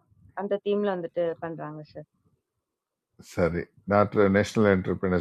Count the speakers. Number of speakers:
two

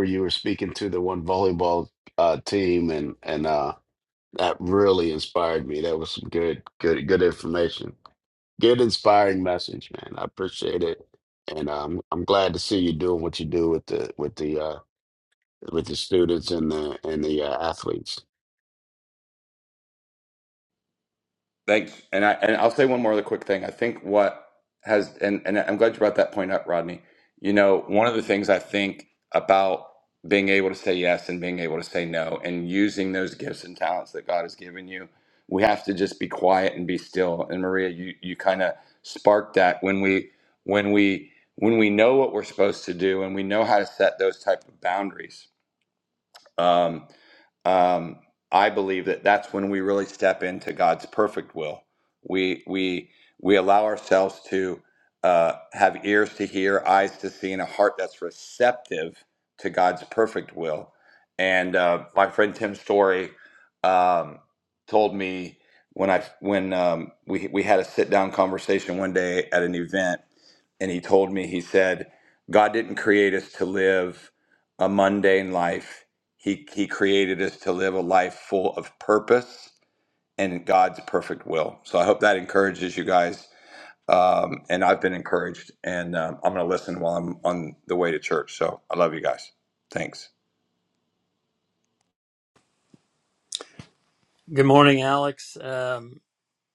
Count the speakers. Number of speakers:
three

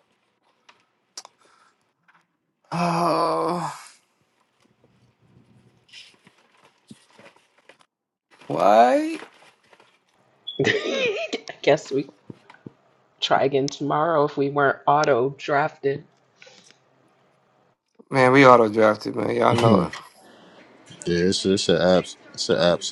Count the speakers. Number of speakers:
three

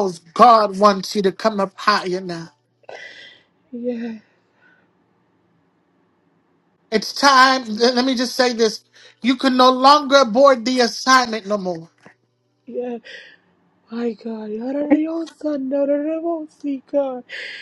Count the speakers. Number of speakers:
two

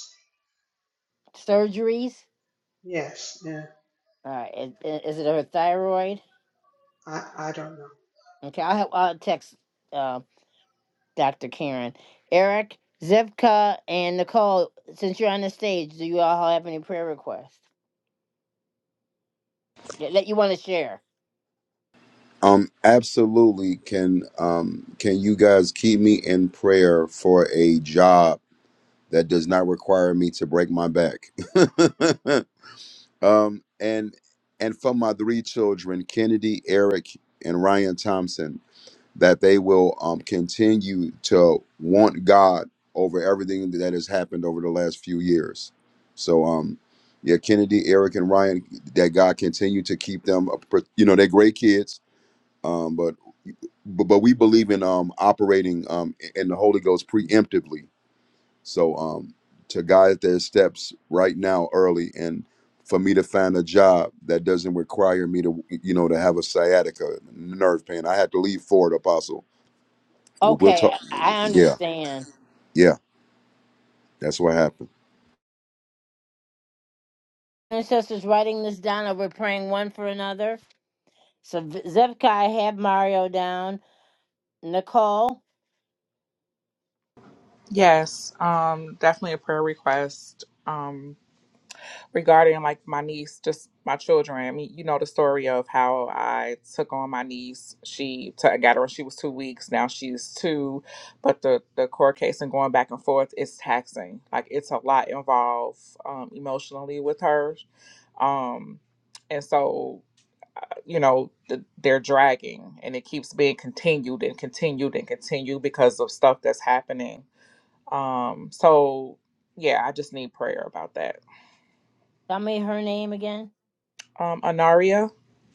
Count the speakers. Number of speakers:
four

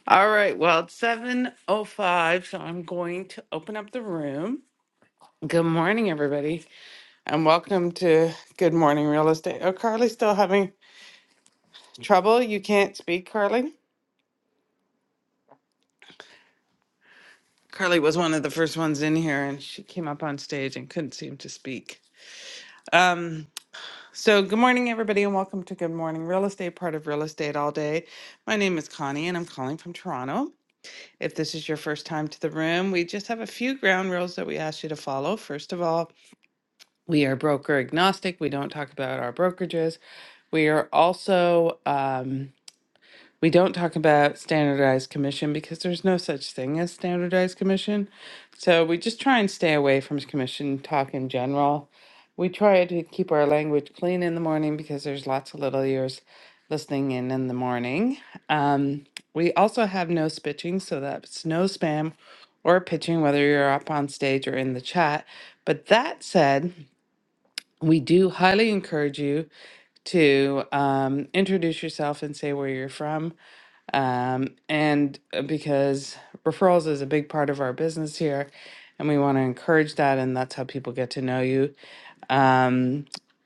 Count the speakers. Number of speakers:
one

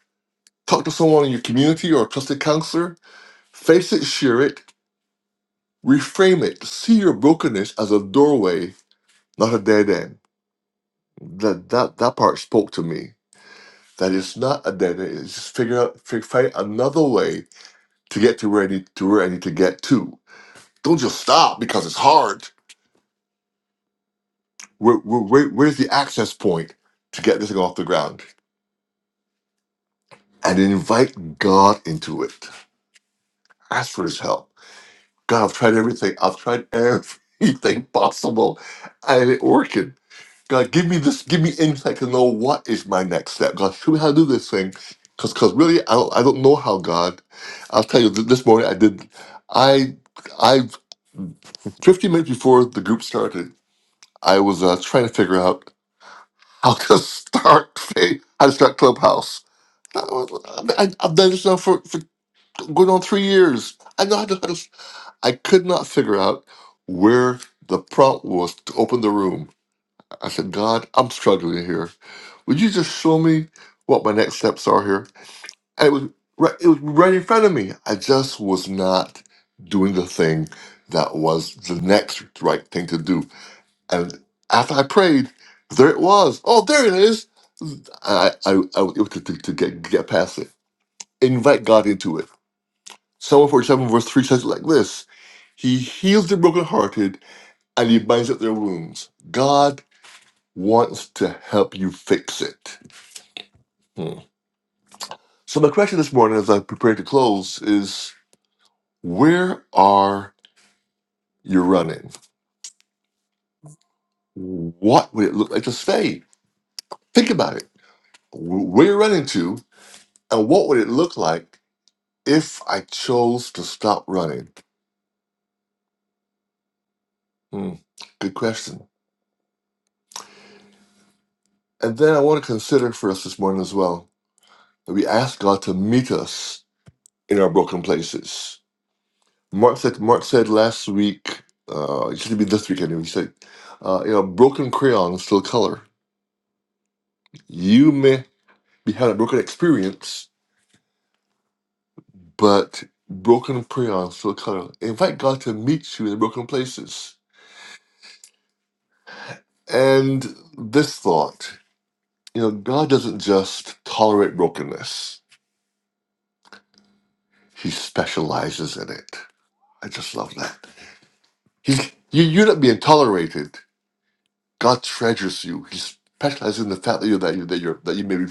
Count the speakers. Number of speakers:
one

